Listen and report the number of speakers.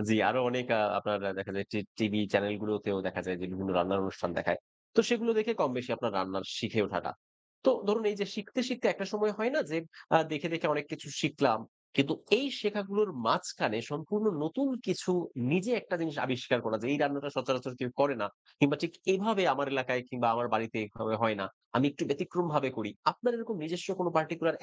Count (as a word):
one